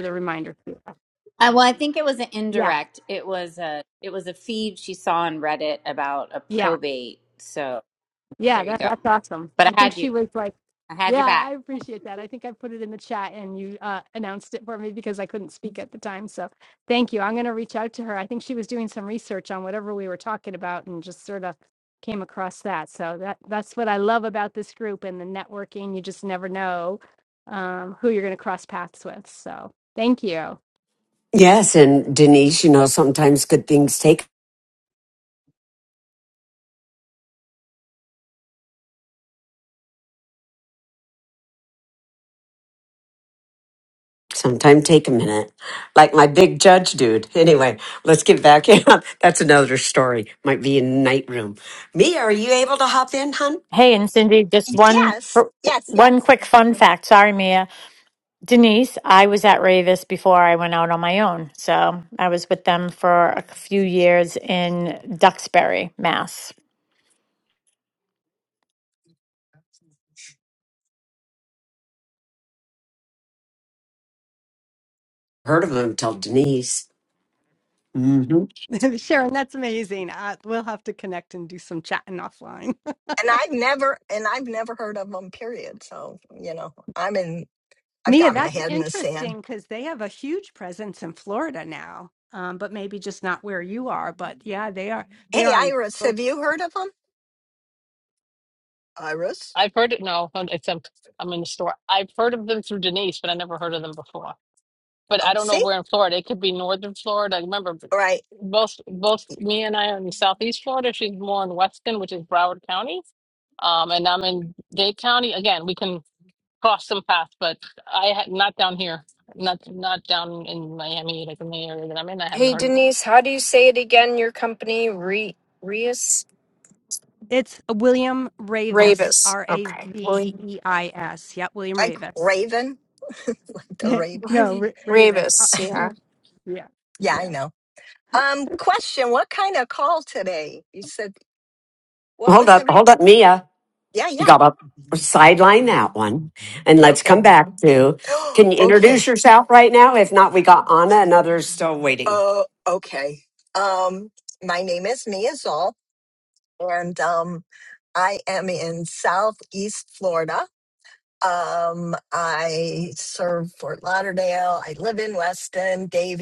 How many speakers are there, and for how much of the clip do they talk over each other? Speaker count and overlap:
7, about 6%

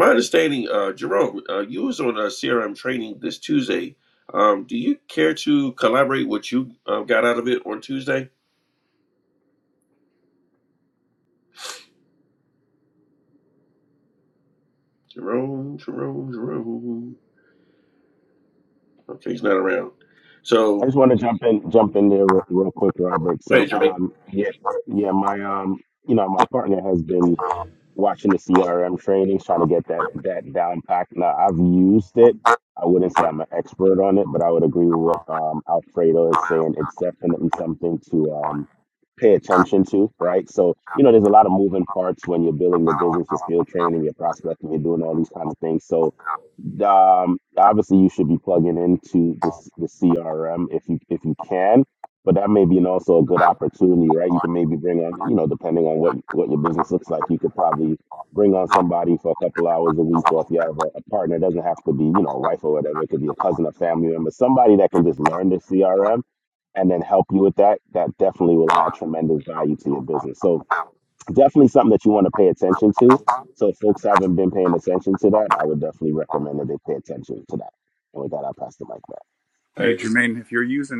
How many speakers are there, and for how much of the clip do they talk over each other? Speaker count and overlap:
3, about 1%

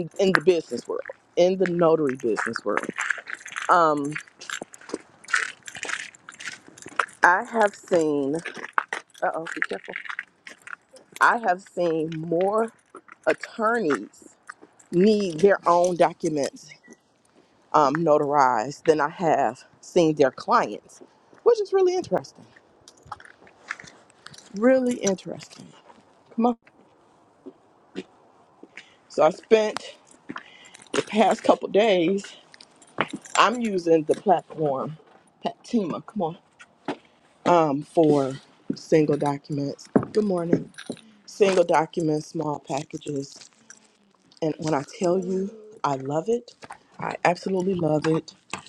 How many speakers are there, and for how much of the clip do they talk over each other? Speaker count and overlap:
1, no overlap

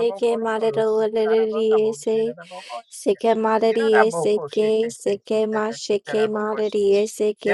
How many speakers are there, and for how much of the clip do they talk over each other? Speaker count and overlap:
1, no overlap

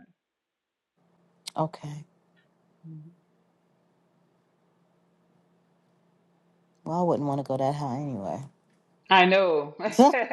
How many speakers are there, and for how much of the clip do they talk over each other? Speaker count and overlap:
2, no overlap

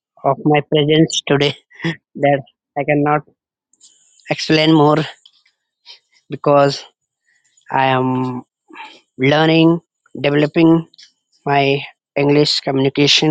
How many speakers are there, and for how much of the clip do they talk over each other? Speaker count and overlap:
1, no overlap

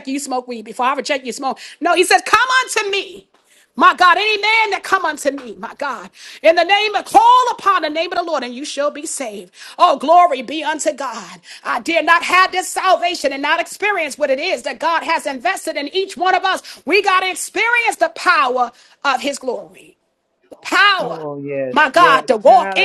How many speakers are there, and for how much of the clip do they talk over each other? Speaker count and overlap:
2, about 6%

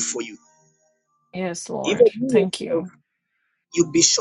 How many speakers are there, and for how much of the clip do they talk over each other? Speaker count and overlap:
2, about 24%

